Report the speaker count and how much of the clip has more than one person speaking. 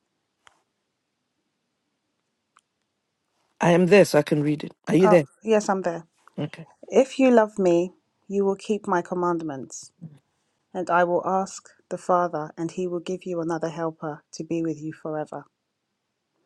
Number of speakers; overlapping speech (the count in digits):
2, about 1%